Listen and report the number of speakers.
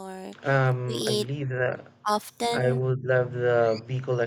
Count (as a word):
two